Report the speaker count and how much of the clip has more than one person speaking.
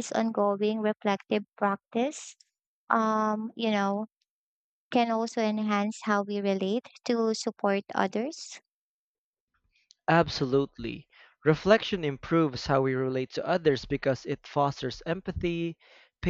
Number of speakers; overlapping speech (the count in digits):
2, no overlap